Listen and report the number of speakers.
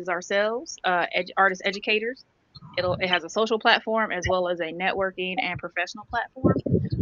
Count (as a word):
one